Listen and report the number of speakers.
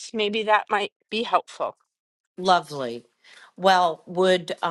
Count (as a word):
two